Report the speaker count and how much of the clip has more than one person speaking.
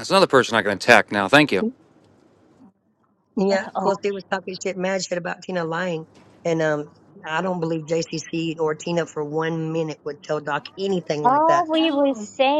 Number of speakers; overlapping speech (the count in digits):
3, about 5%